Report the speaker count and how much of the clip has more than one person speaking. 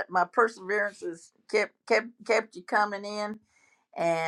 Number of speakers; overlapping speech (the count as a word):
one, no overlap